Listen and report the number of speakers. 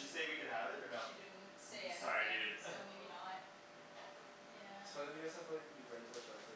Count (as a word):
three